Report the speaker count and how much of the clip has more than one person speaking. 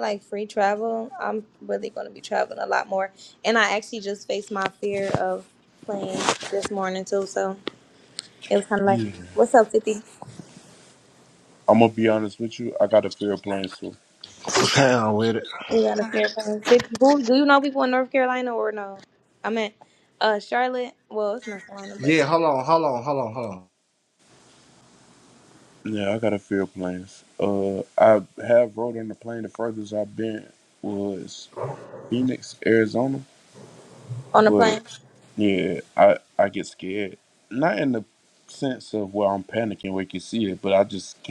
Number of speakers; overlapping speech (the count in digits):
3, about 2%